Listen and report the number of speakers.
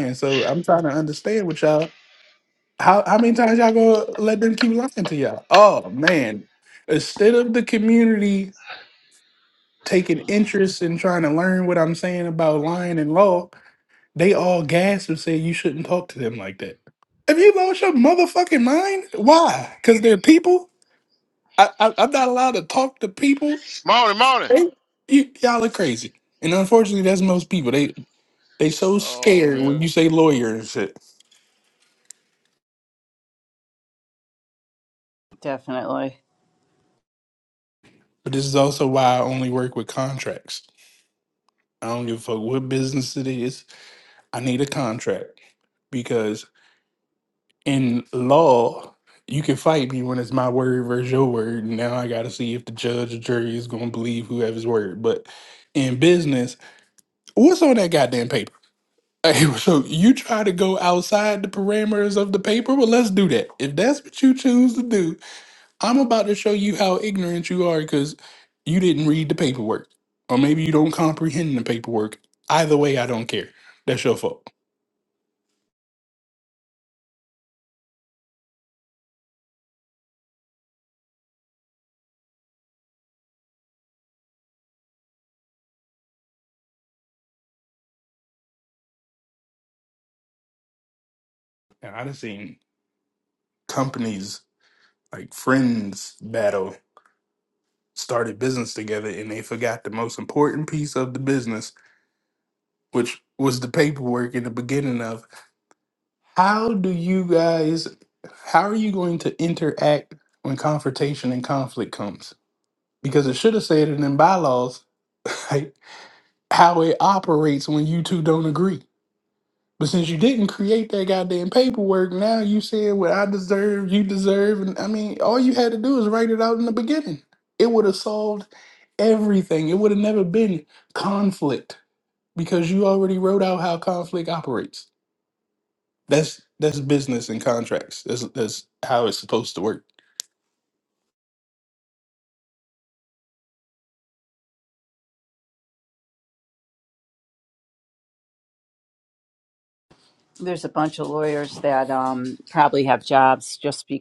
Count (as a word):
three